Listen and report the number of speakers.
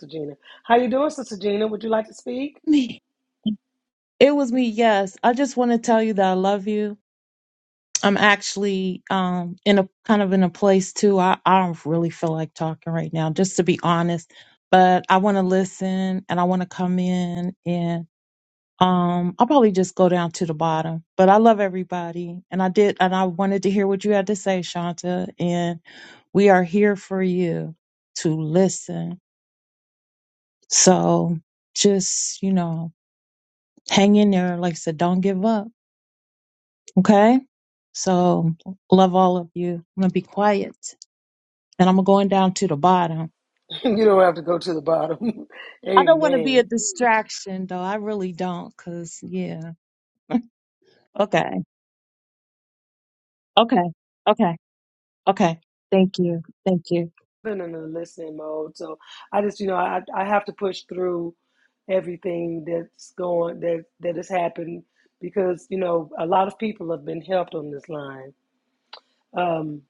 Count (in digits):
2